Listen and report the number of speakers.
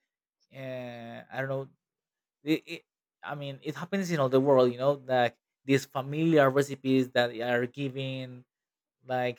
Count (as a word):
one